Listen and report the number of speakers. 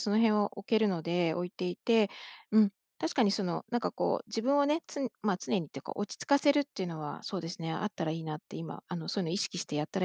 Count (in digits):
1